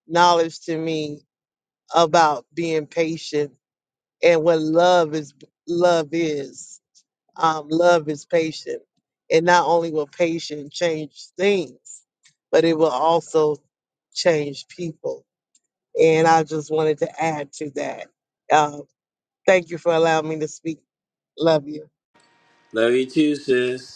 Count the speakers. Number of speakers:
2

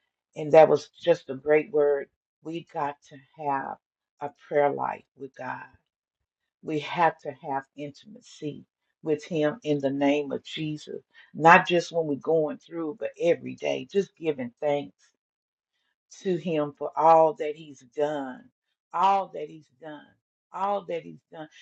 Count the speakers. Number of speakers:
1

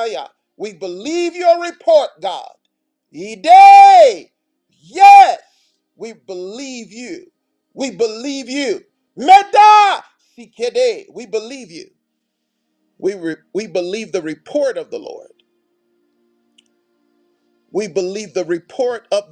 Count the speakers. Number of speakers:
1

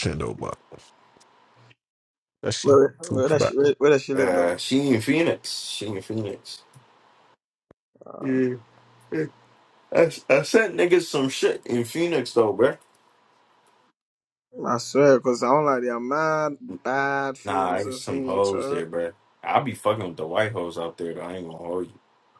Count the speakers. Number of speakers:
3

